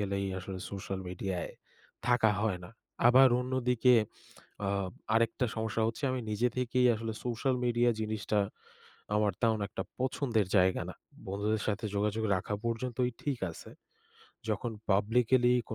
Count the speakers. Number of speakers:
1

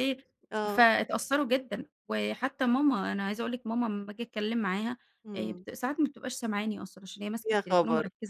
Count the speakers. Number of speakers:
2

